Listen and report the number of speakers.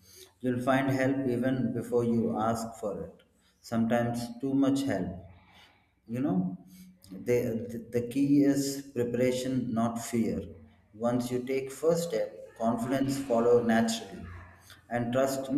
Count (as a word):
one